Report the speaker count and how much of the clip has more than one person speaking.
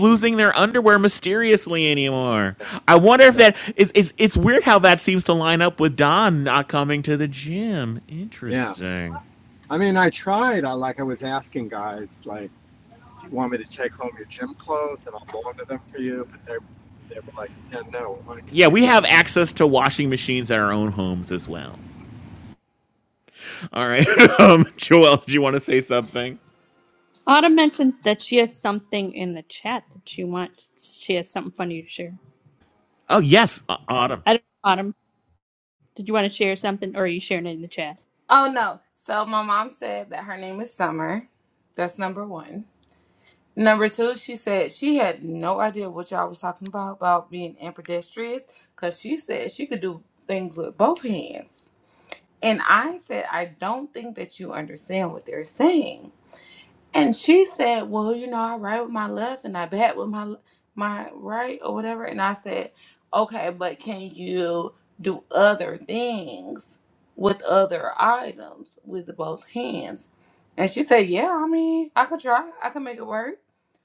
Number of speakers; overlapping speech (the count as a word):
four, about 1%